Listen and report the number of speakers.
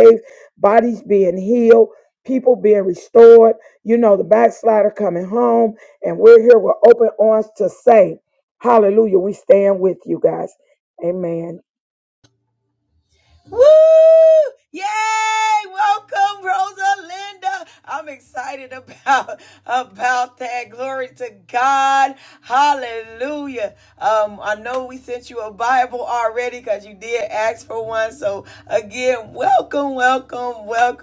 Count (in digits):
2